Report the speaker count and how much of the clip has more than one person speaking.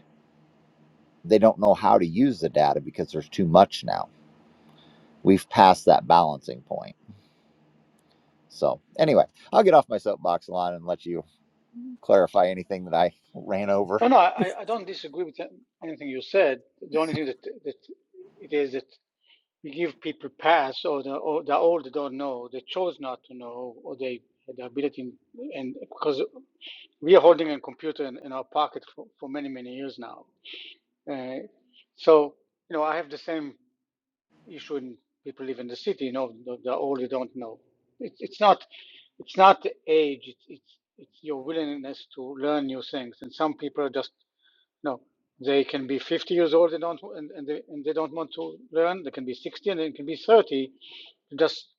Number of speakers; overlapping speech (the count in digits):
2, under 1%